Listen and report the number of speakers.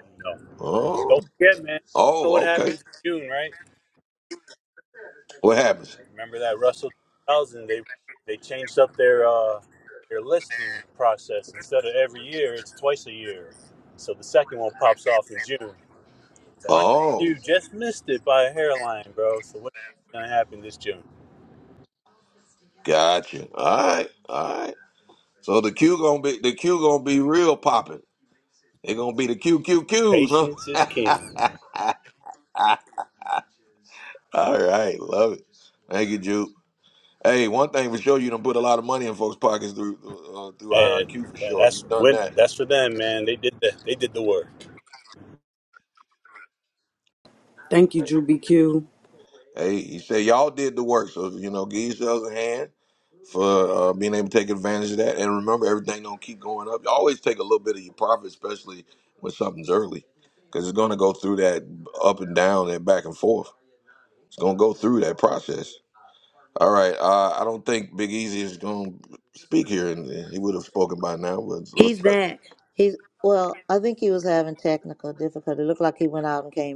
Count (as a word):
four